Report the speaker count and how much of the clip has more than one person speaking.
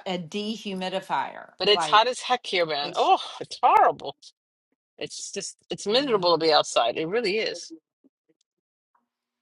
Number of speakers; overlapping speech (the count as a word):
two, about 6%